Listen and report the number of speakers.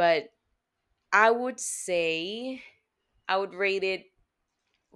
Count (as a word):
one